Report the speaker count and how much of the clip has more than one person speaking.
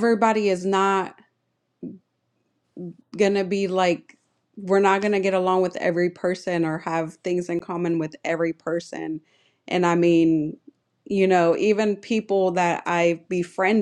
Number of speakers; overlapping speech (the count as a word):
one, no overlap